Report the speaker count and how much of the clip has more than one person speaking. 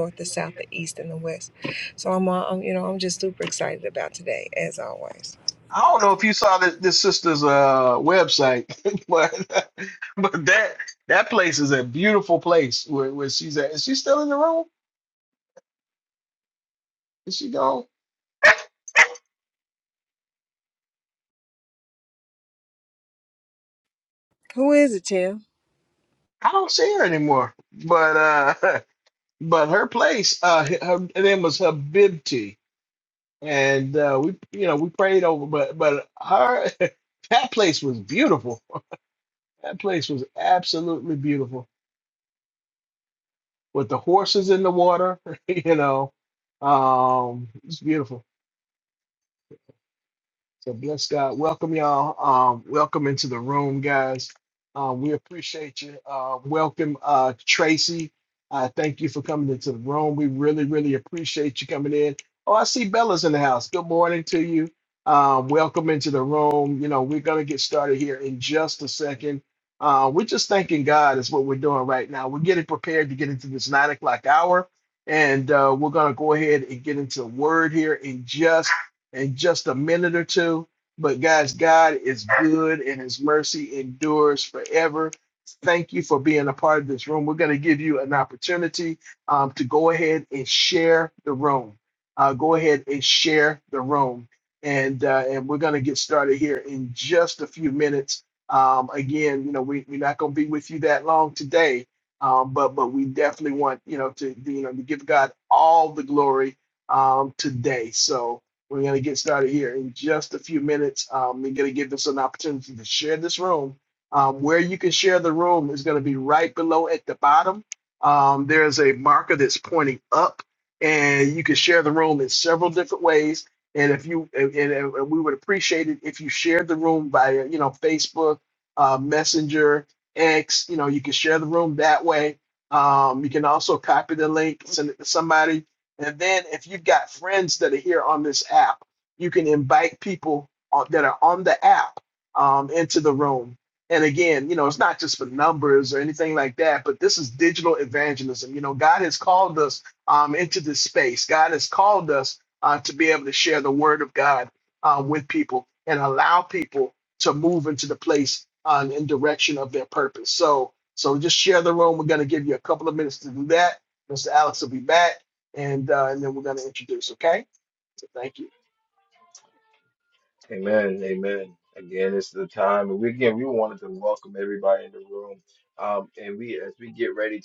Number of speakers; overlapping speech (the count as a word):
three, no overlap